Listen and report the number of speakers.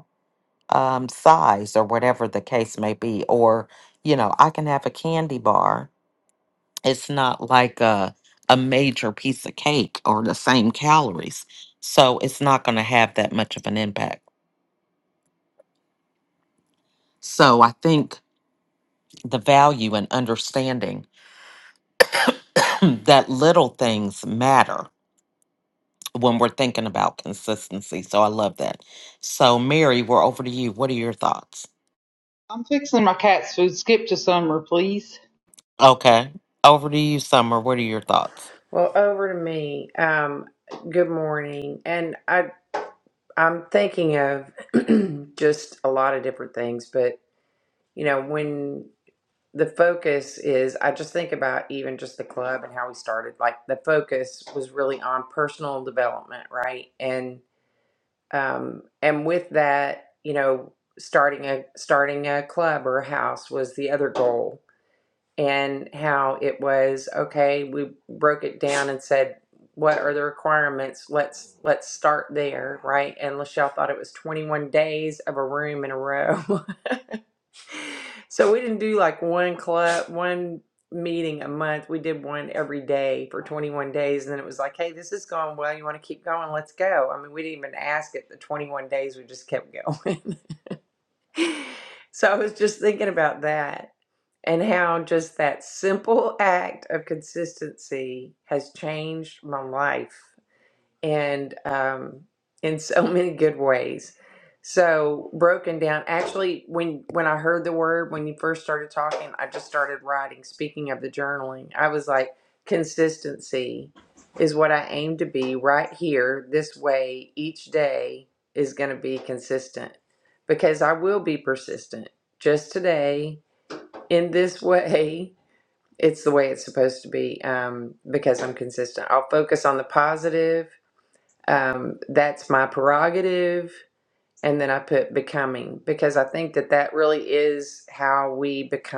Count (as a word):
three